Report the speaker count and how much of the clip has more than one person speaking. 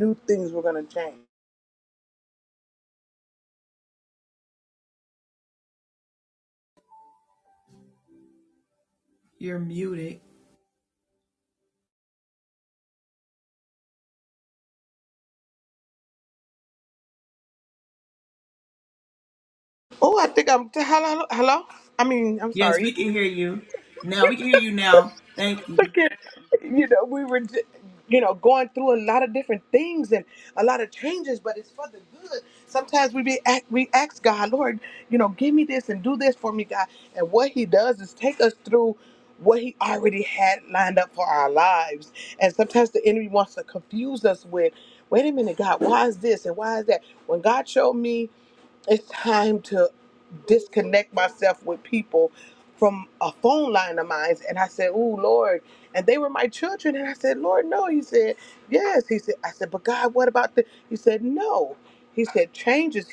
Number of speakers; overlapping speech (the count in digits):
2, about 1%